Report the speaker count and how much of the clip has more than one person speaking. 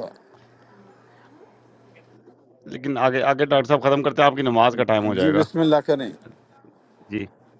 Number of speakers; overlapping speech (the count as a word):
two, about 4%